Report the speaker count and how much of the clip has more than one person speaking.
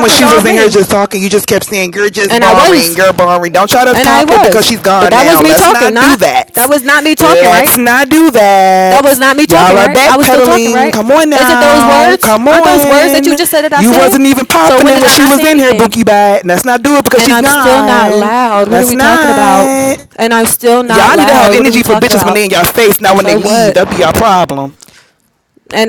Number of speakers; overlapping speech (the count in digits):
2, about 57%